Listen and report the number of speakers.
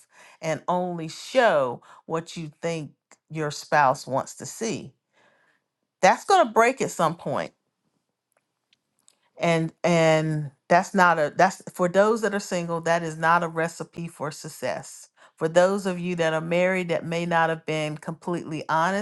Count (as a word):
one